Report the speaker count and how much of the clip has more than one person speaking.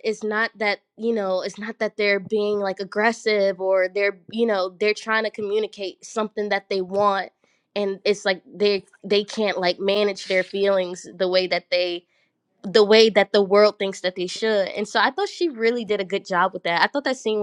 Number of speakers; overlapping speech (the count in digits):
1, no overlap